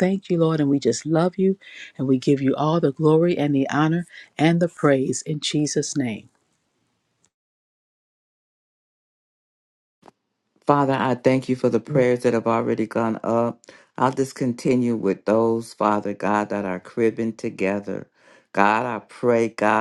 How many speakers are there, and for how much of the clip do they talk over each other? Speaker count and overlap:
2, no overlap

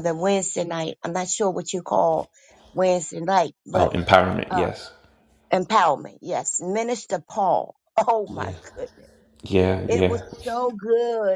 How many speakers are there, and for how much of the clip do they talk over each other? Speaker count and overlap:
2, about 9%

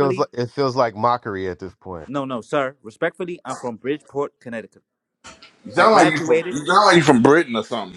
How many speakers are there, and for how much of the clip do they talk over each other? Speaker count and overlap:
3, about 12%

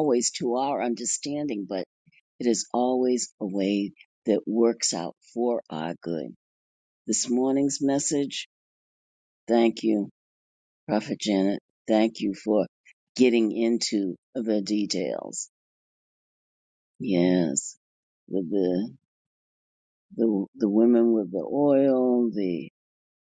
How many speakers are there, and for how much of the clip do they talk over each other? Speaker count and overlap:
1, no overlap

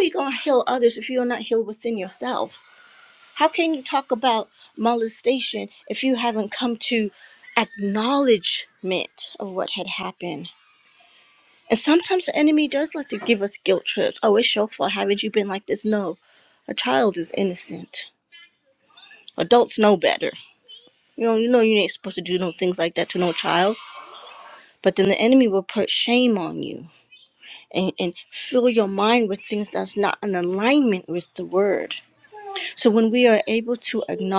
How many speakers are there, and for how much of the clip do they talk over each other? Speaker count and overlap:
1, no overlap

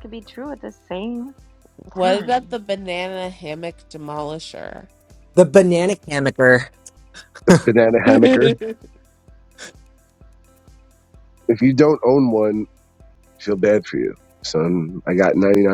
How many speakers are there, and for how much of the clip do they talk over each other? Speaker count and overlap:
4, about 3%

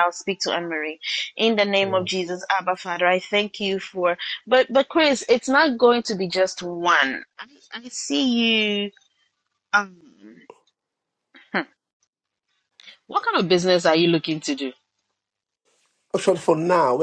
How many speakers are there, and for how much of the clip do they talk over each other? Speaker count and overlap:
2, about 2%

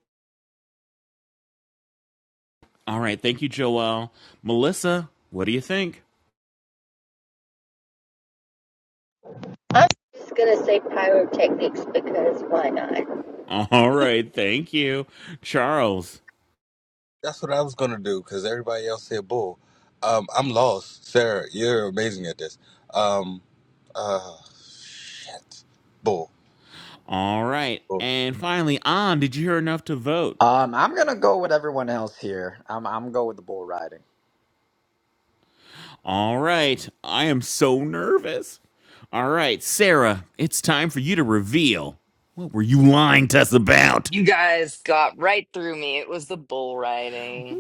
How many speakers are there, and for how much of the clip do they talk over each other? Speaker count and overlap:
5, under 1%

